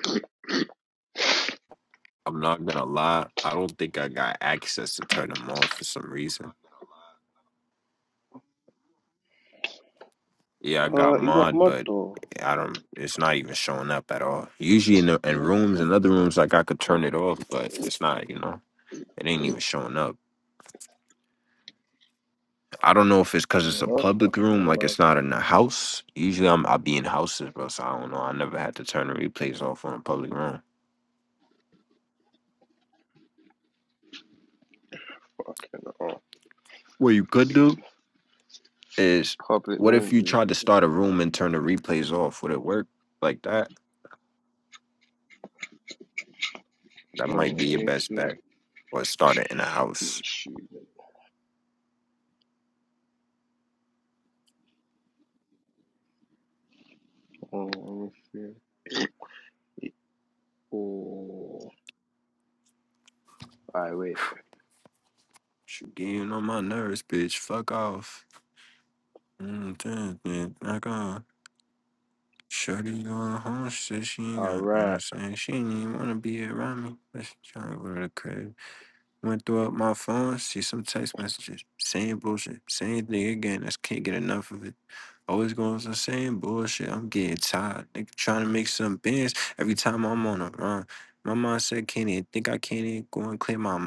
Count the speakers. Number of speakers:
two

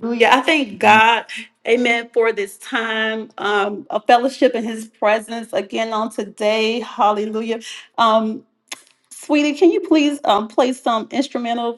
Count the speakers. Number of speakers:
one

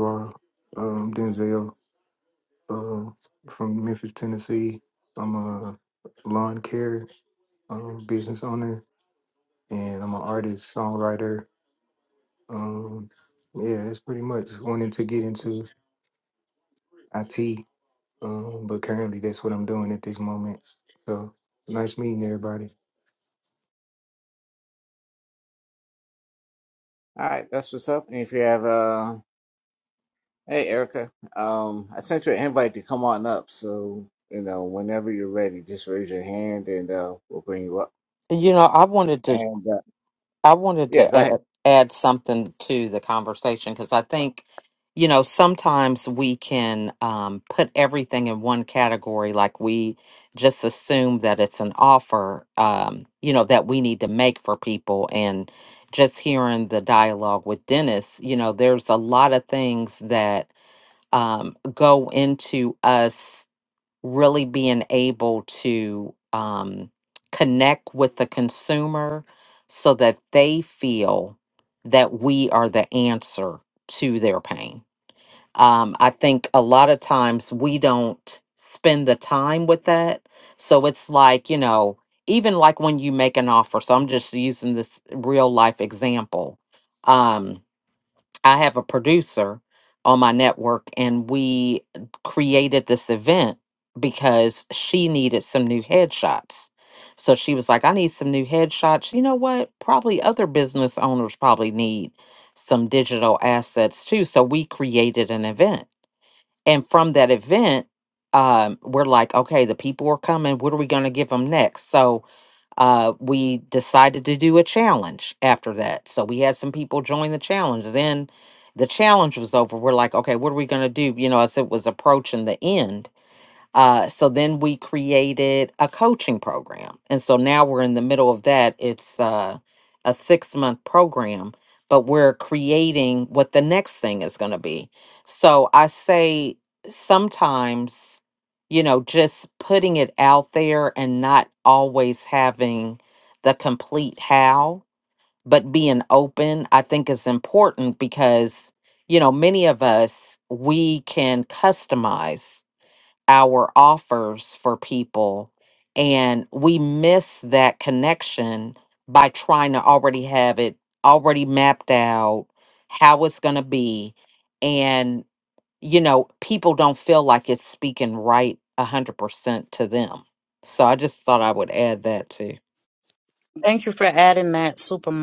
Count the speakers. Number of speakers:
four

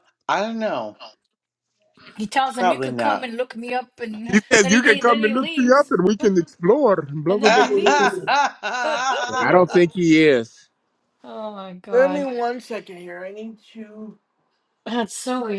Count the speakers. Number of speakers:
four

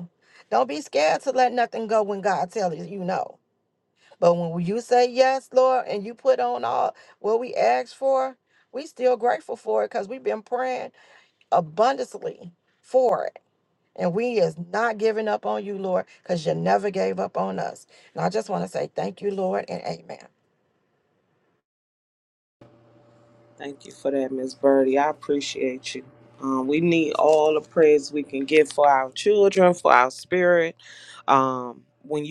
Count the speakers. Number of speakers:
two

